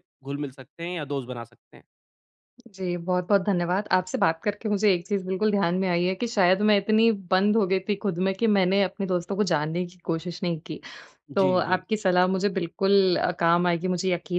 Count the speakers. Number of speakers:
two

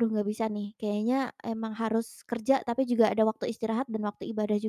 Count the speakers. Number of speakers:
one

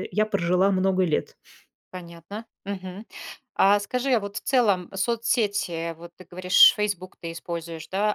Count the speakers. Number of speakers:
two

